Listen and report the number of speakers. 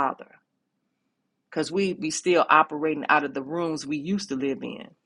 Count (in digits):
1